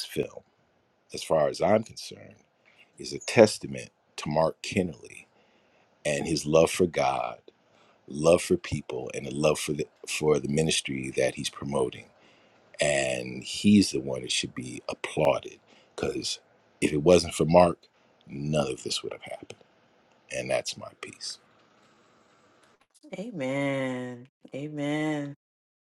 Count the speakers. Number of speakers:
2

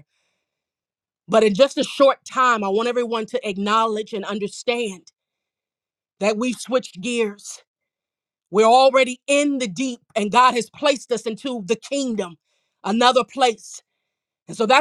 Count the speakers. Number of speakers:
1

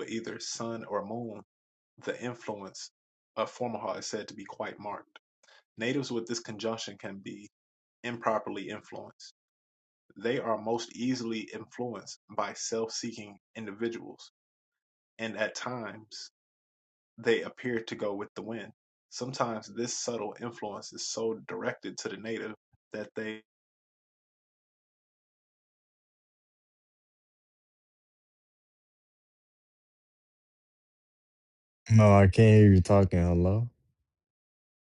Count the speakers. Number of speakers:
2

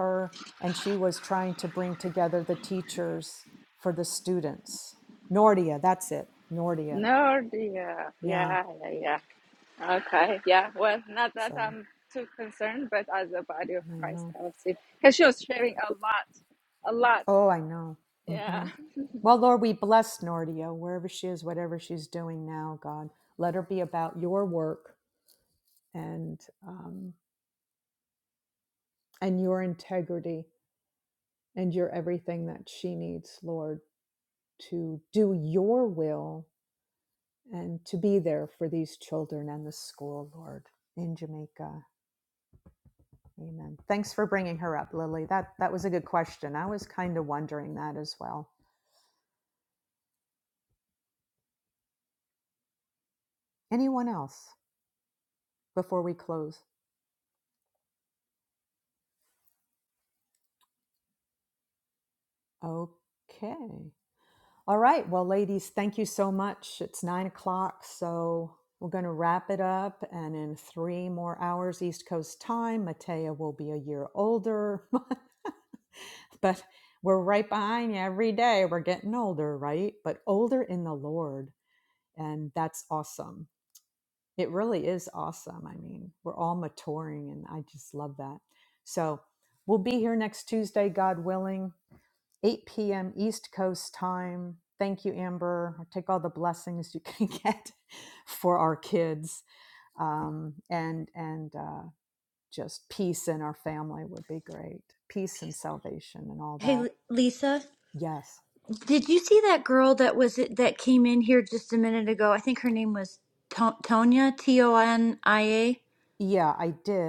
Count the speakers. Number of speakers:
3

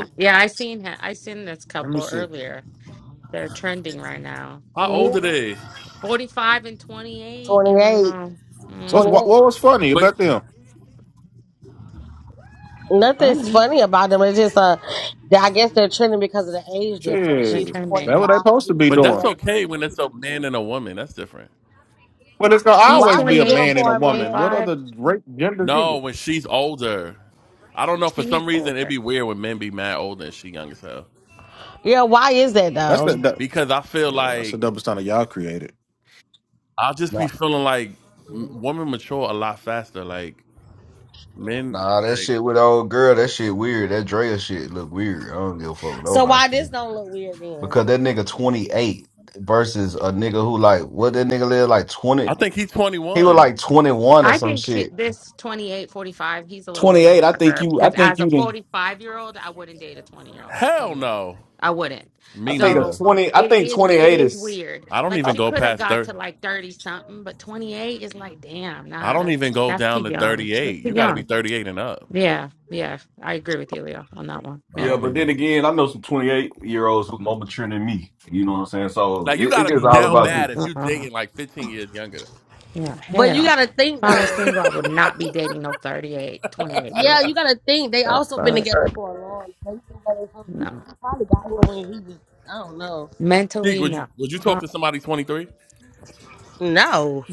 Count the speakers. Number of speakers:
5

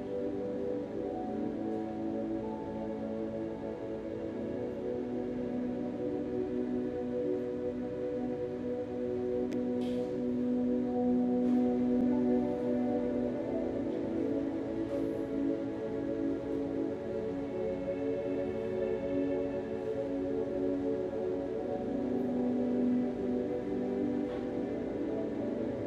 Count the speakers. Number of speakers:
0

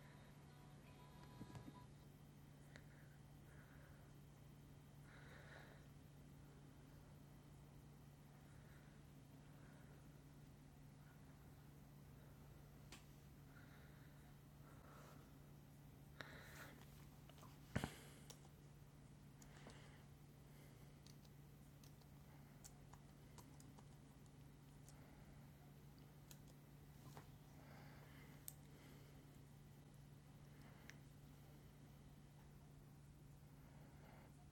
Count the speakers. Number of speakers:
0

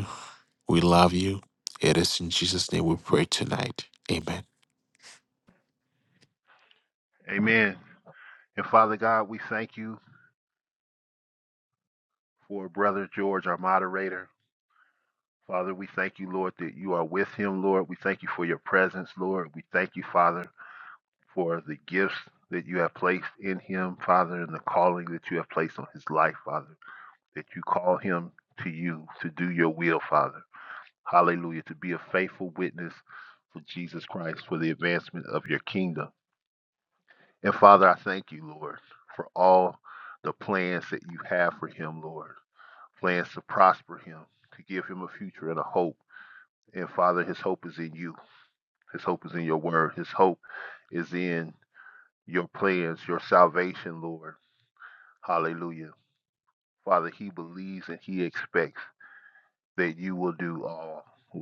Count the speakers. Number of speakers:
2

